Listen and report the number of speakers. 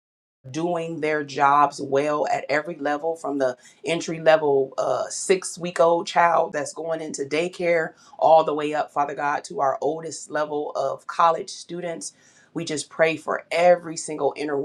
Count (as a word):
one